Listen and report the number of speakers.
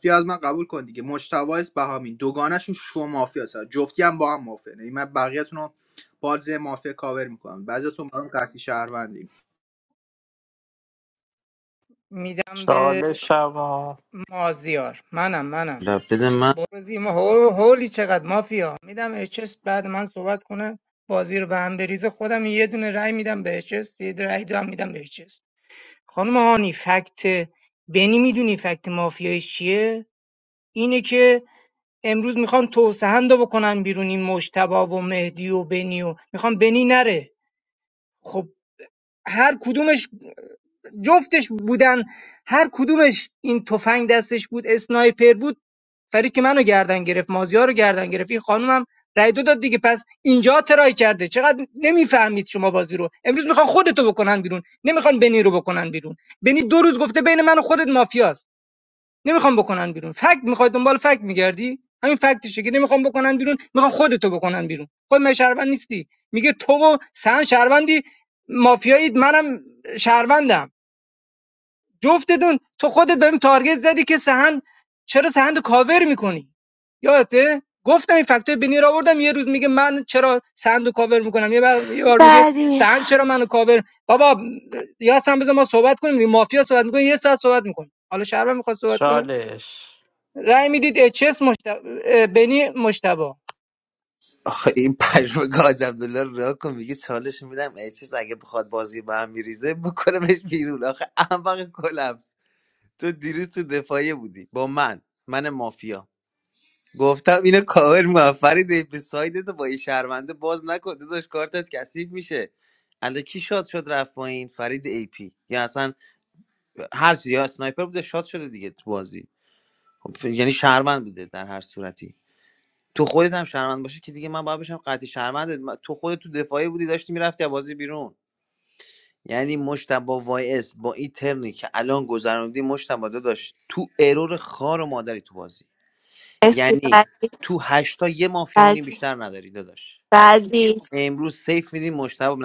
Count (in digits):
5